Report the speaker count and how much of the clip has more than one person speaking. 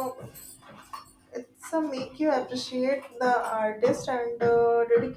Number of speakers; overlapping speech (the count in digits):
1, no overlap